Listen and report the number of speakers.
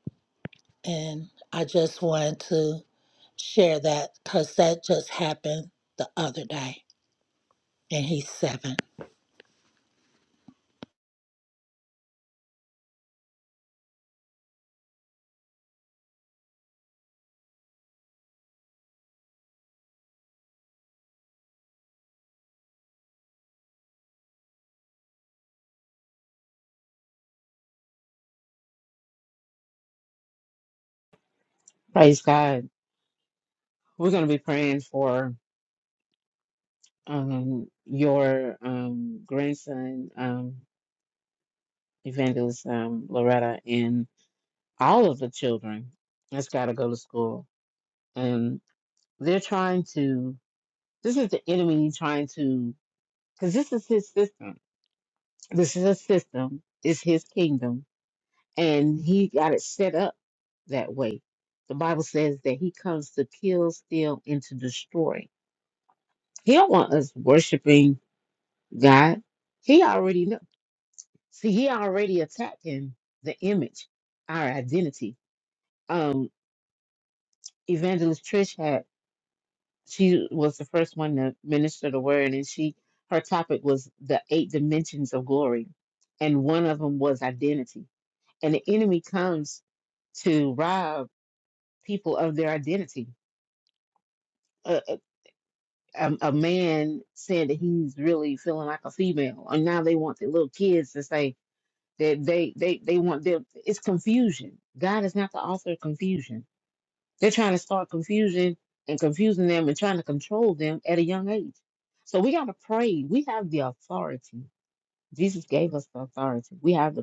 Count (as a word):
two